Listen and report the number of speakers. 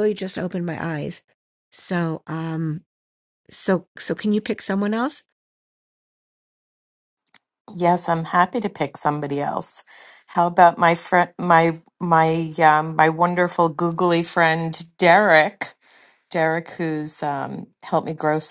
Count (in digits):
2